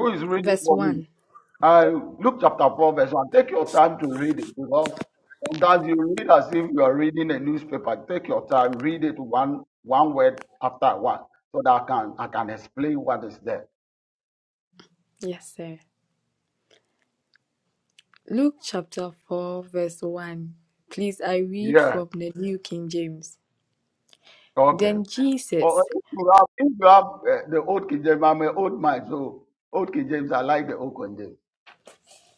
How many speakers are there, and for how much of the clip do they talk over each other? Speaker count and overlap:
two, about 4%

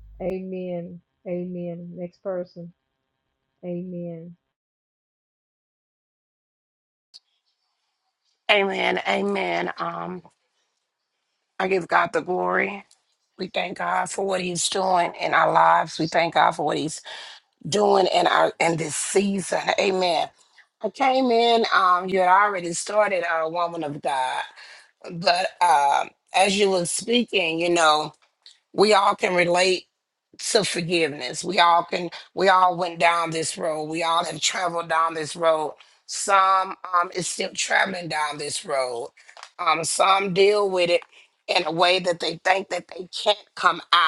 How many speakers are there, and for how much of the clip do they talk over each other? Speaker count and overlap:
two, no overlap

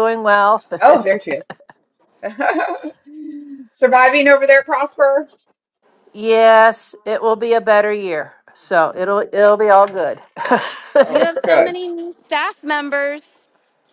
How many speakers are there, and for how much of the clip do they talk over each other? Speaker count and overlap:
three, about 5%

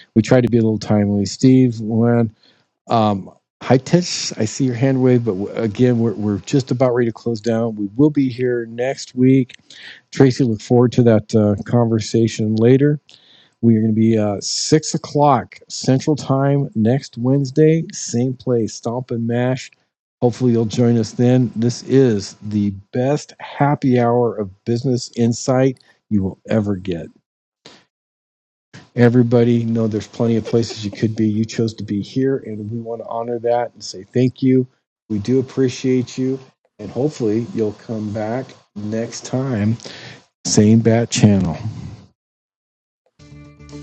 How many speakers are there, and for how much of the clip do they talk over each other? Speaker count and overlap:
one, no overlap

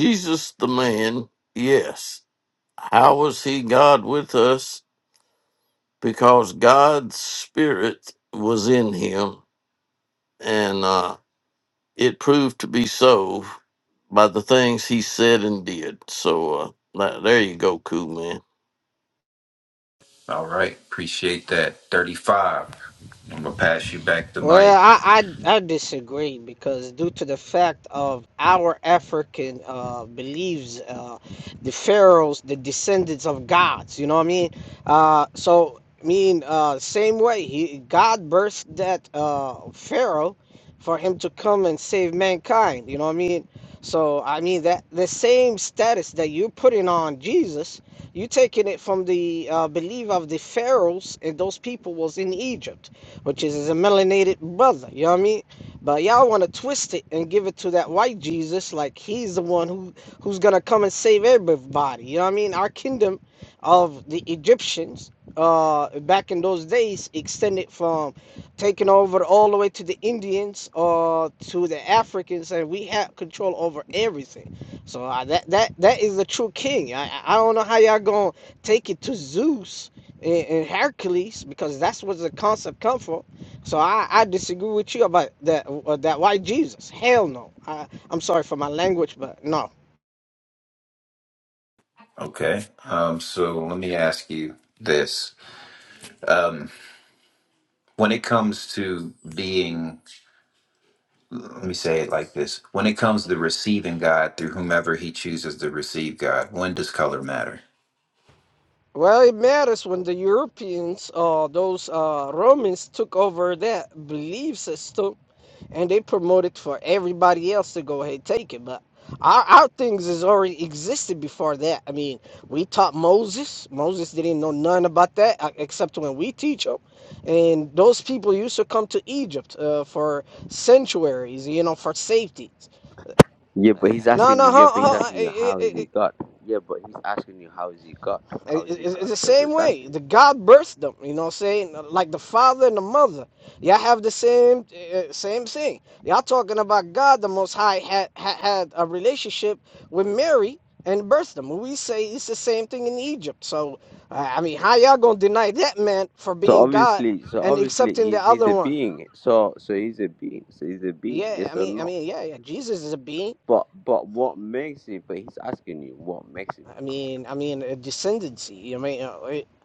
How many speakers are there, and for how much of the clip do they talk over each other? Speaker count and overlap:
four, about 4%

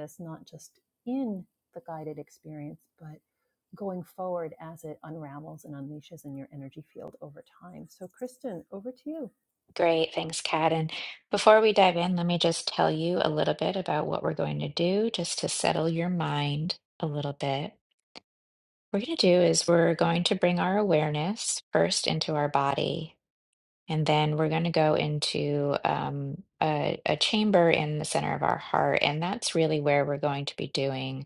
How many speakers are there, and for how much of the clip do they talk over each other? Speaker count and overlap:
two, no overlap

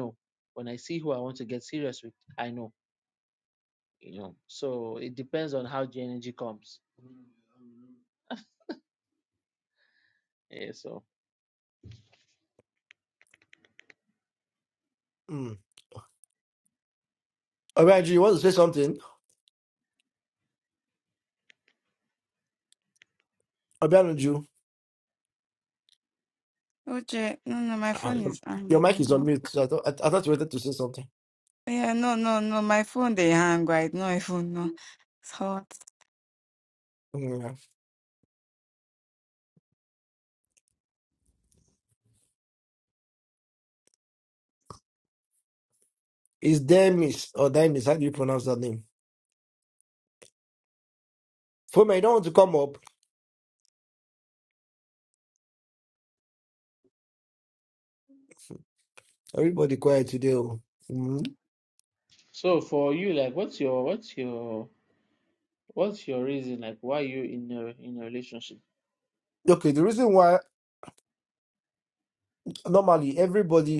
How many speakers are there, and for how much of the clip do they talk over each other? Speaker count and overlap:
three, about 1%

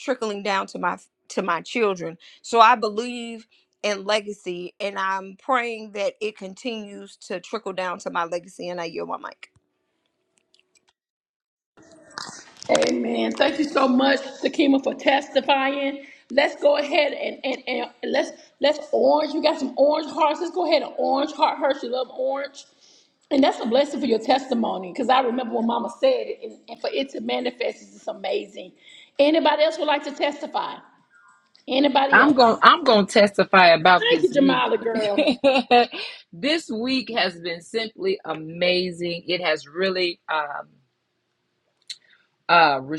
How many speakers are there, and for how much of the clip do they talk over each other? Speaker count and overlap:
three, about 3%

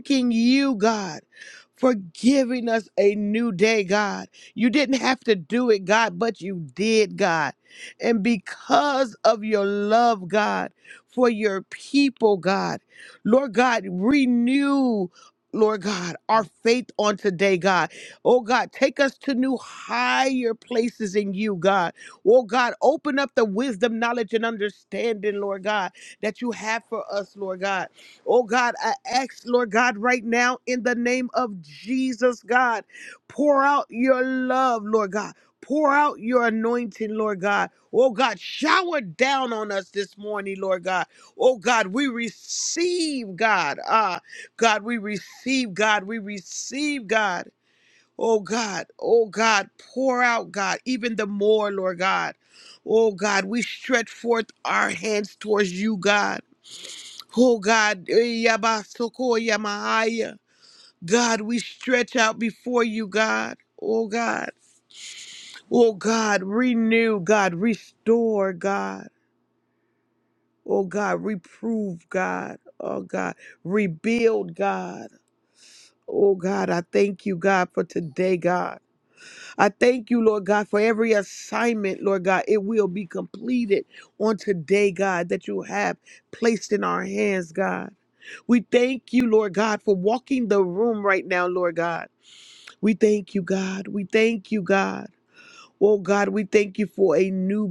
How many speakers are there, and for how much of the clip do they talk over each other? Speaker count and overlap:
one, no overlap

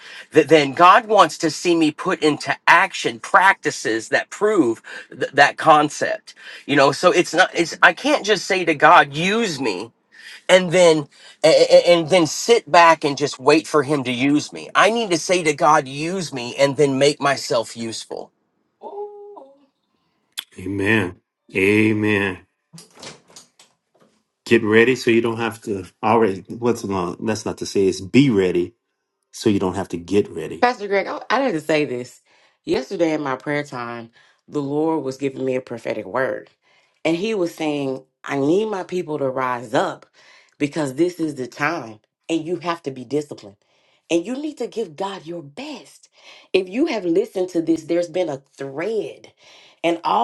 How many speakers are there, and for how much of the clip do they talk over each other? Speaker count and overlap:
three, no overlap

